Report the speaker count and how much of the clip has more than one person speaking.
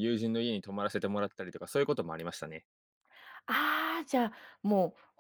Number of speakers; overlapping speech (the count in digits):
2, no overlap